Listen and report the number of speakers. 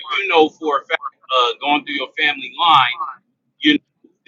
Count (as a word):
one